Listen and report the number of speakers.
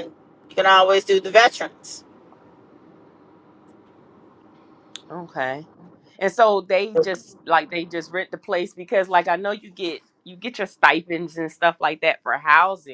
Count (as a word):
two